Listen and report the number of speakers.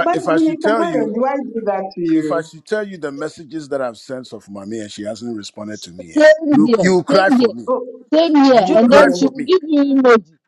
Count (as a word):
three